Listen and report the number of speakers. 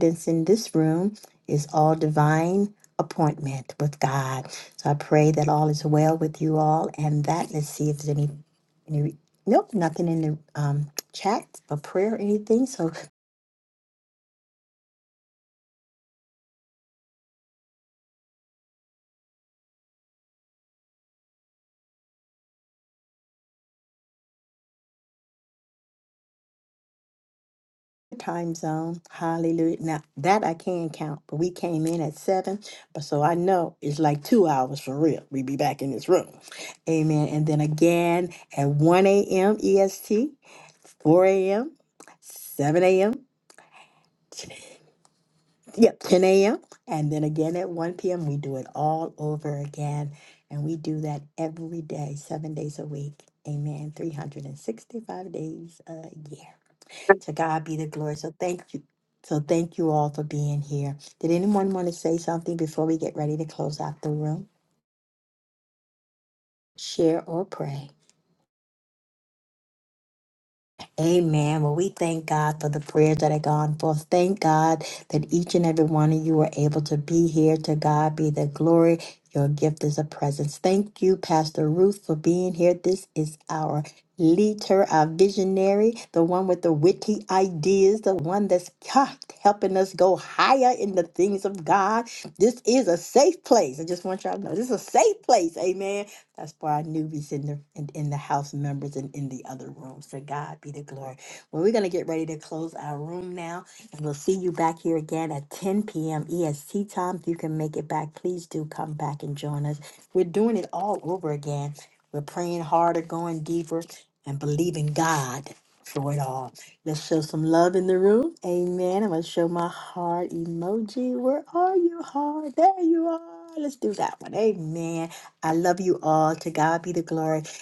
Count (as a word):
one